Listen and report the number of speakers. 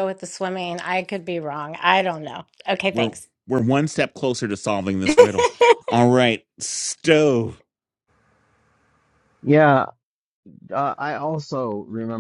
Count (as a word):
three